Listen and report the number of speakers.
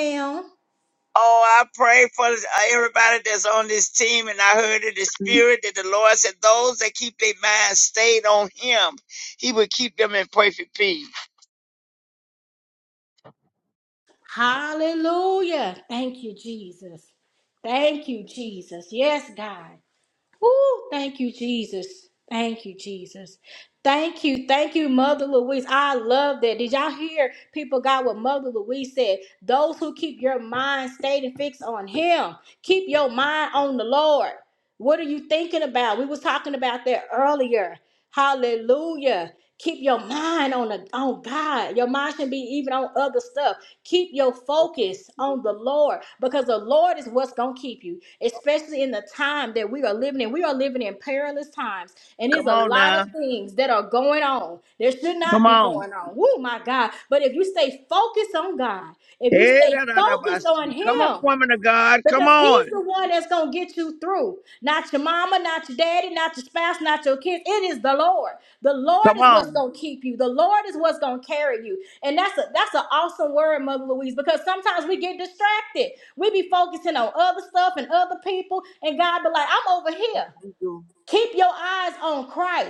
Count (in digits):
2